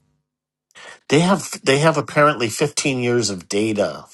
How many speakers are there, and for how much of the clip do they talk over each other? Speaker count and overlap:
one, no overlap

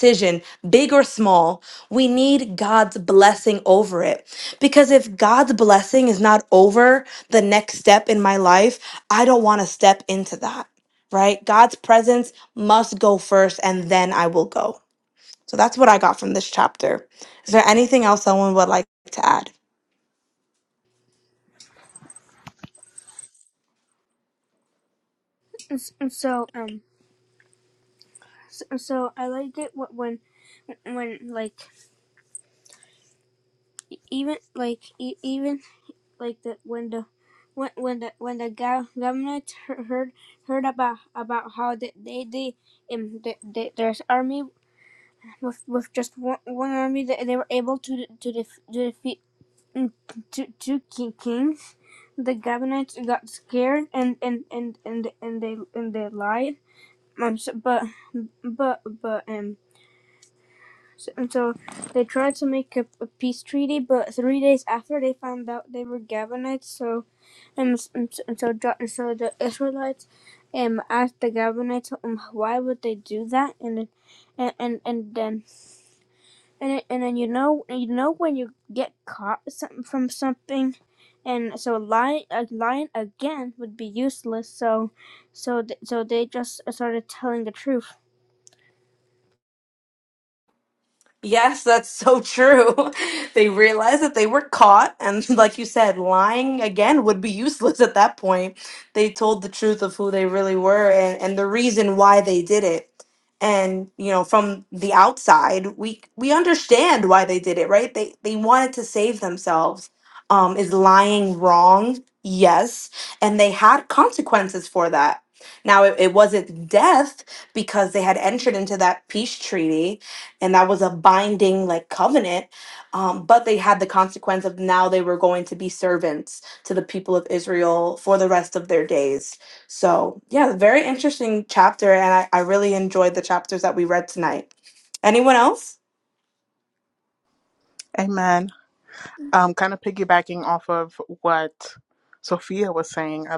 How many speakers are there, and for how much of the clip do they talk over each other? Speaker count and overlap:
three, no overlap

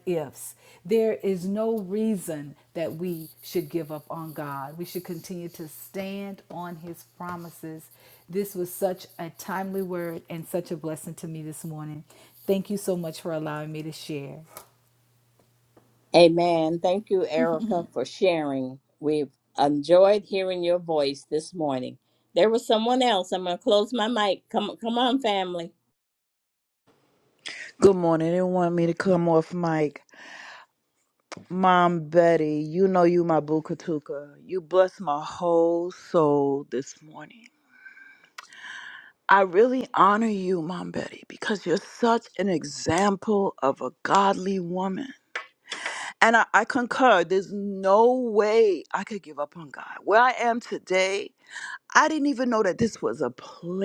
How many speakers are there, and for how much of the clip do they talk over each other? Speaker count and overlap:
three, no overlap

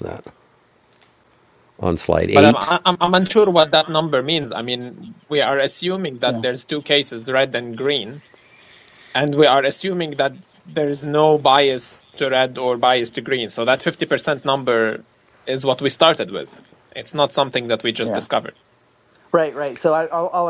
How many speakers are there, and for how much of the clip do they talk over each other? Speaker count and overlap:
three, about 4%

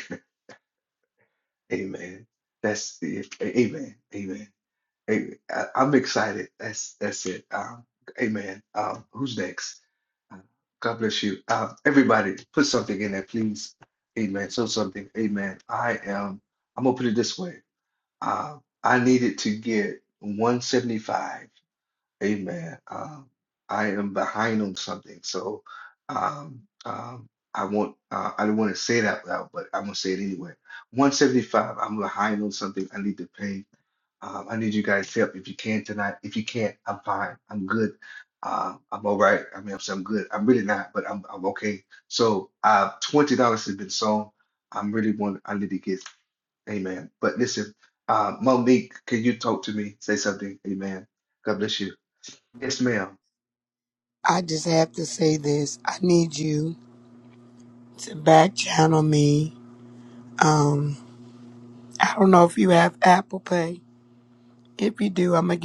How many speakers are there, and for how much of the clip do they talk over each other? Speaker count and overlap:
two, no overlap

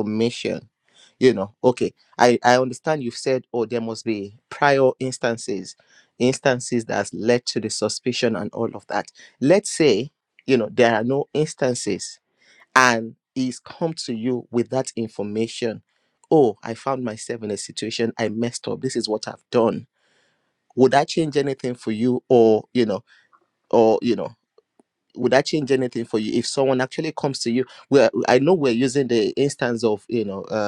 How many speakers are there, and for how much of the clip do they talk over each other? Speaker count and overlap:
one, no overlap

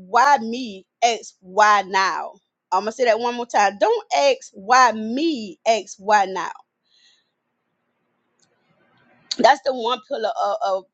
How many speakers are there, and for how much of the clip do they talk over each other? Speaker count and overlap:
one, no overlap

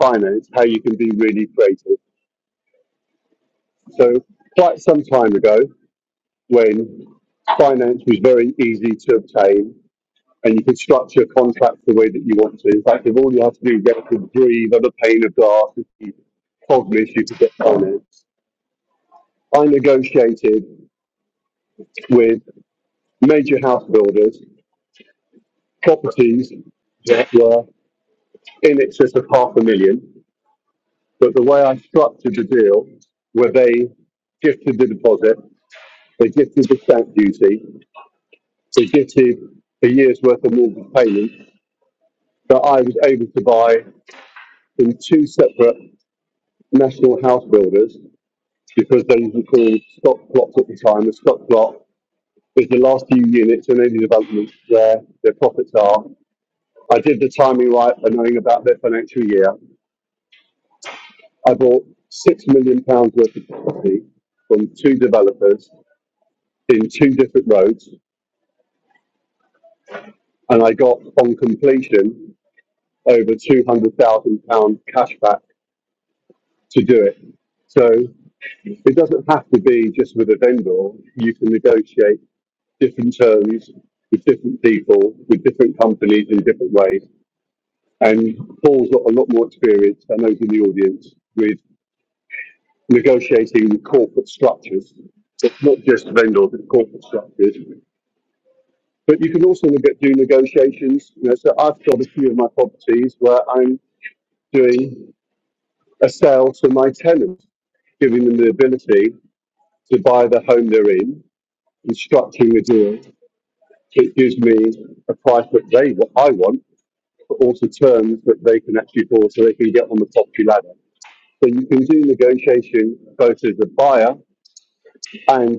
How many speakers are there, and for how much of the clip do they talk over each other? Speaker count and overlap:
one, no overlap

